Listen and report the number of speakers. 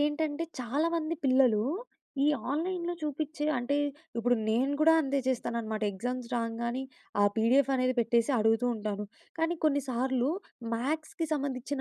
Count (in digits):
1